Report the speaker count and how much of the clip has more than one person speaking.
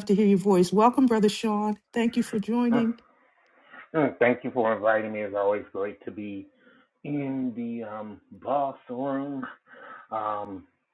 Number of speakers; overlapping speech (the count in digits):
2, no overlap